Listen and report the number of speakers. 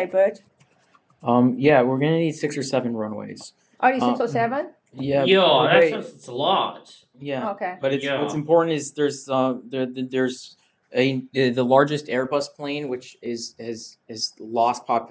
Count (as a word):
three